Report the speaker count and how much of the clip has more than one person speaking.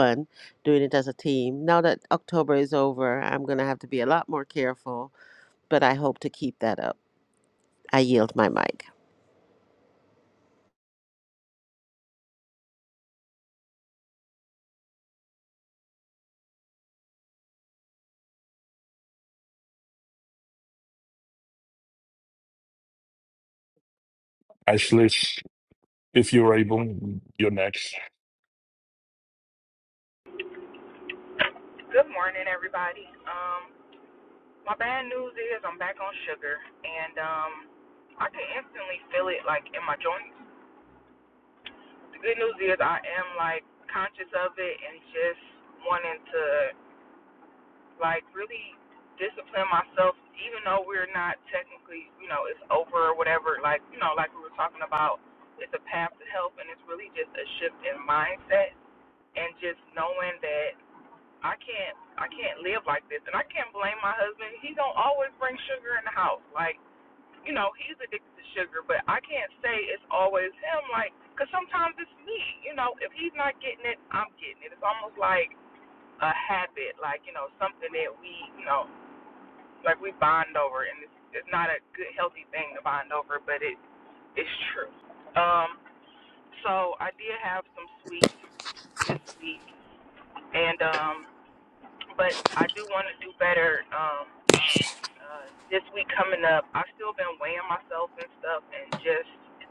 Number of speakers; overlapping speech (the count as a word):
three, no overlap